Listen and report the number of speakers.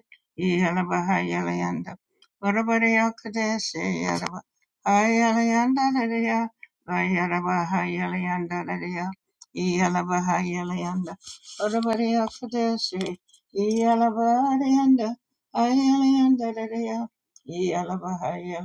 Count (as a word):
one